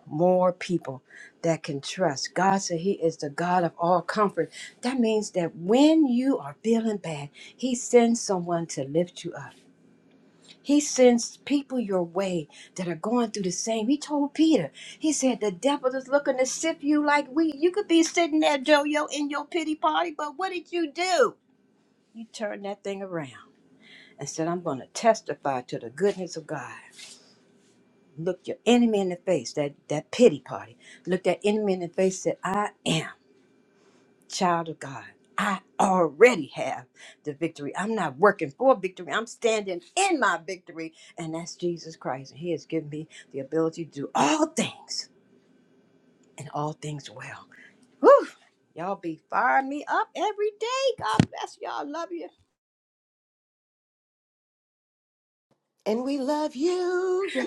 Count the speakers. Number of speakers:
two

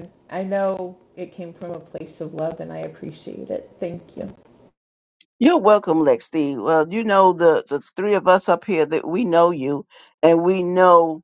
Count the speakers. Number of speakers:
two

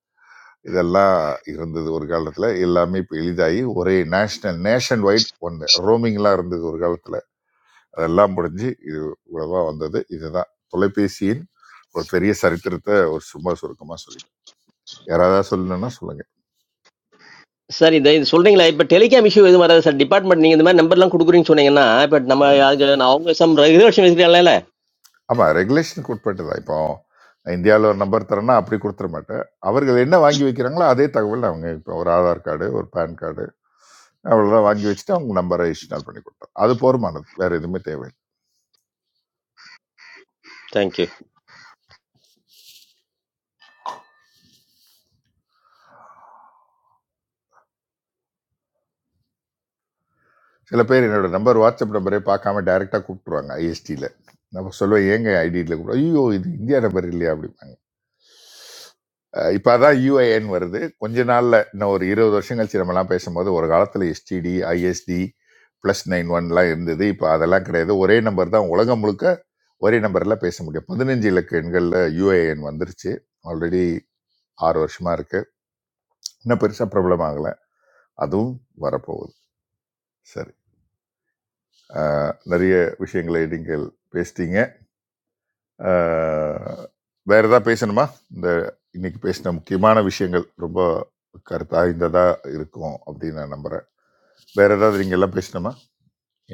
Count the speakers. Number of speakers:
two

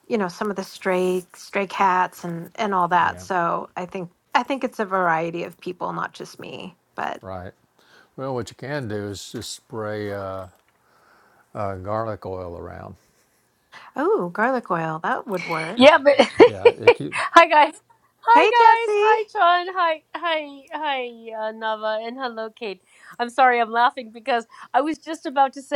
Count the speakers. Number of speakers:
three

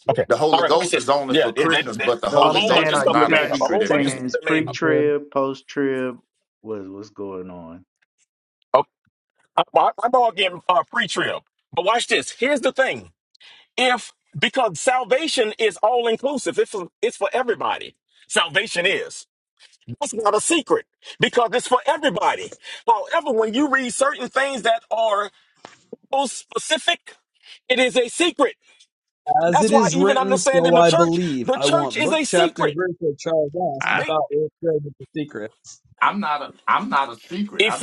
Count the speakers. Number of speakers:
four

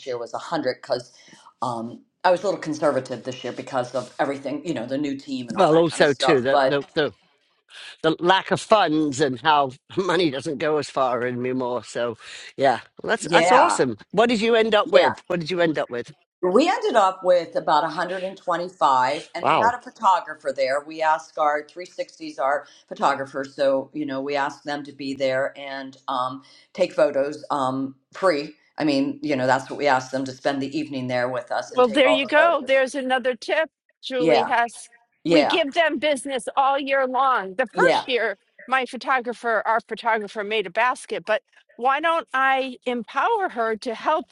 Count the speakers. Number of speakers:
three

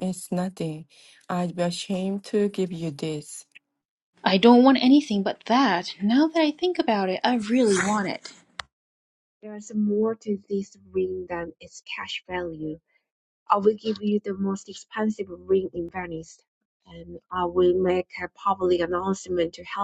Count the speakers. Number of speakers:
three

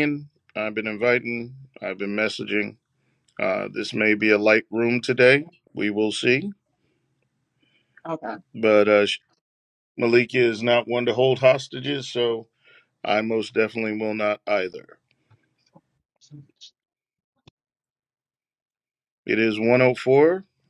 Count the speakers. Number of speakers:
one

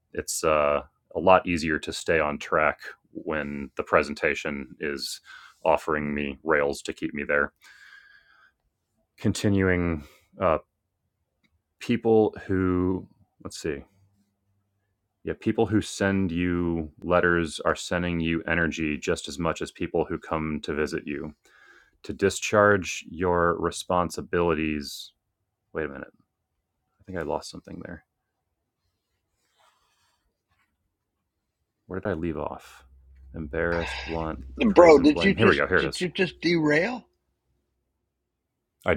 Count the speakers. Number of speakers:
two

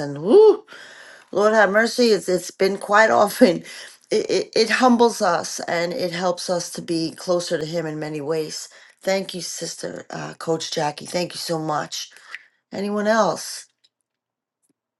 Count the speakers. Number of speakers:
one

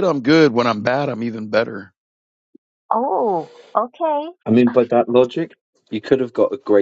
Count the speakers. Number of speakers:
three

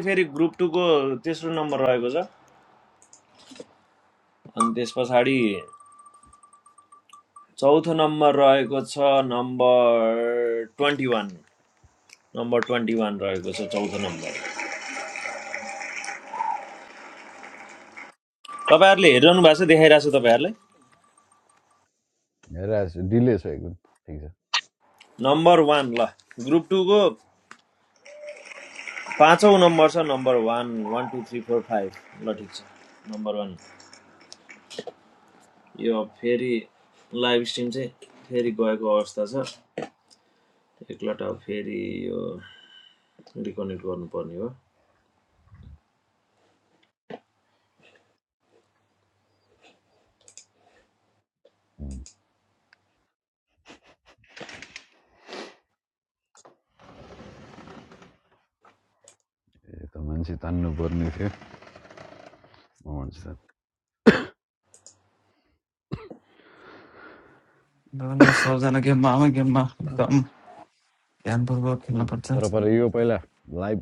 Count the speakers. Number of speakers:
three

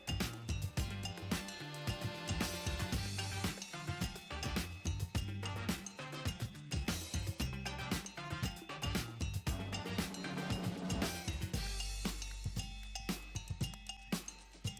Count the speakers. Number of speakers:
zero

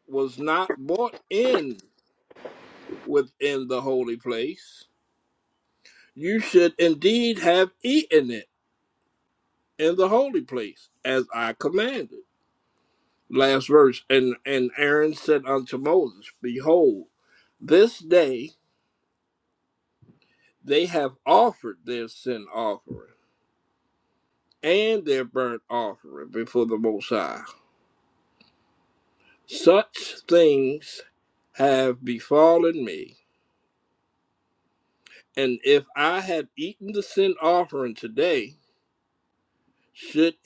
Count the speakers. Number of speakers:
one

